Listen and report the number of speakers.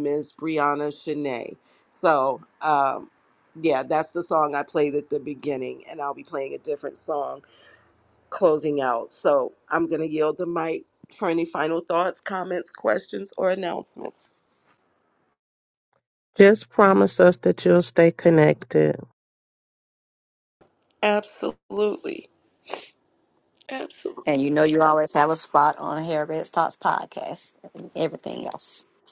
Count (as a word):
three